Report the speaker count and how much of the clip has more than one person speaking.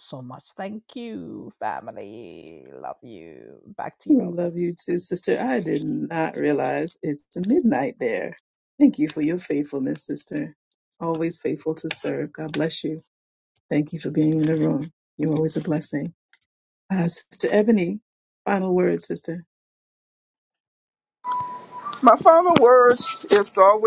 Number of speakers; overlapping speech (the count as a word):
three, about 1%